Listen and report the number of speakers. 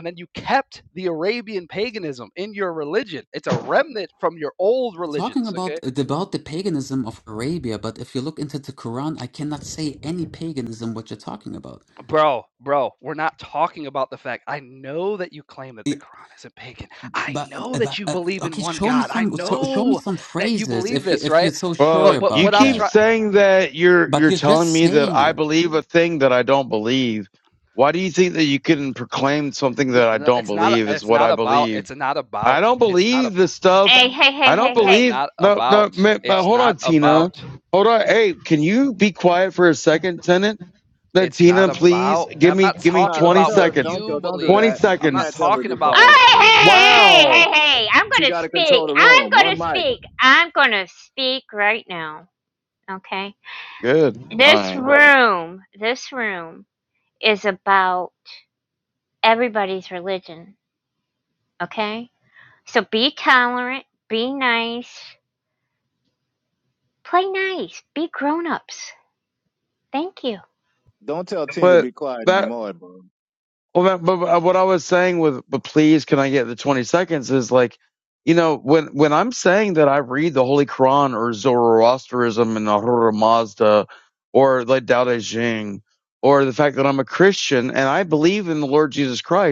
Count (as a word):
five